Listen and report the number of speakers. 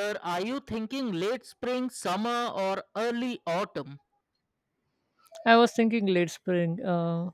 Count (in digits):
2